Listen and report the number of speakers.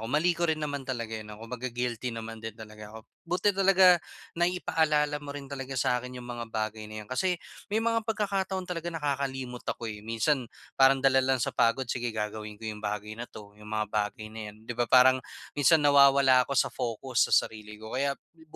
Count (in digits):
1